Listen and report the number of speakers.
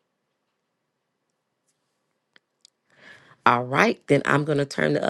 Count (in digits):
1